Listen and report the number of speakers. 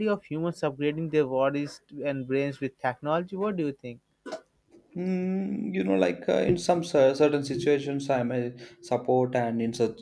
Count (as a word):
two